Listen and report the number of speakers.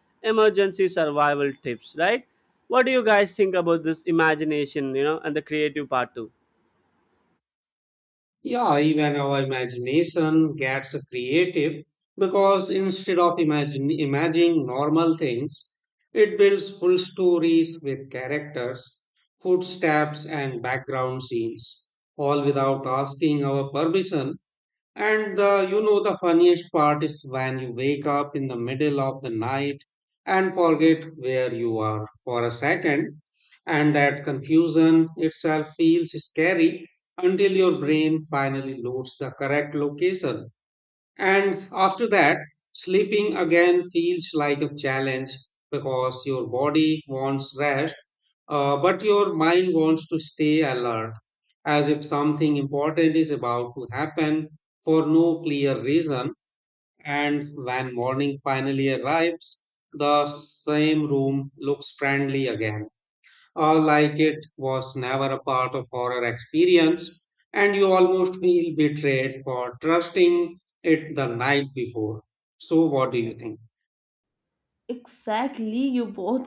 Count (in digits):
3